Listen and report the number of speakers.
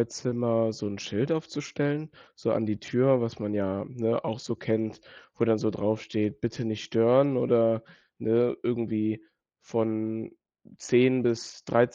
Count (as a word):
one